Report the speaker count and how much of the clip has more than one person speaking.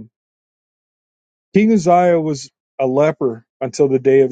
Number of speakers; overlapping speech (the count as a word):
one, no overlap